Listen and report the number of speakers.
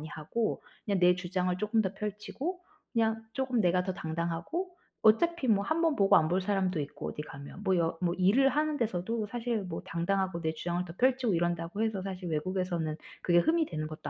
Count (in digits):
1